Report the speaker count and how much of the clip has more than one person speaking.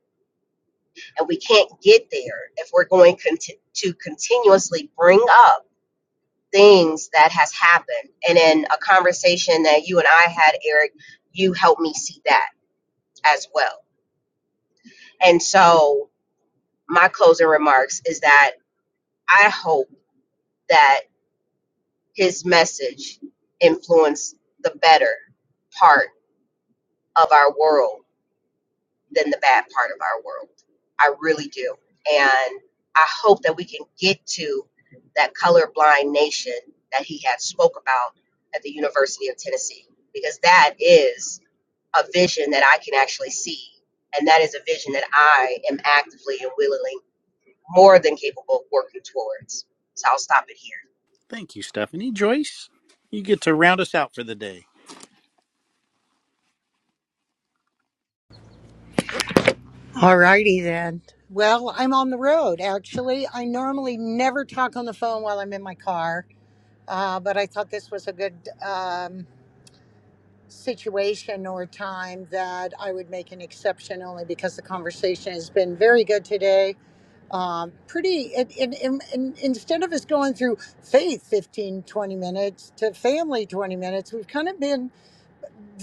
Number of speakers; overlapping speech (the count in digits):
3, no overlap